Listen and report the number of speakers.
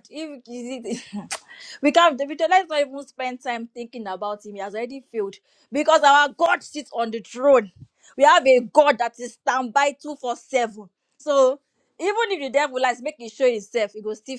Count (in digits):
1